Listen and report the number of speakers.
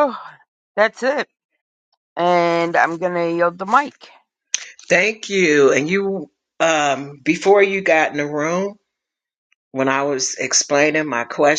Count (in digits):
2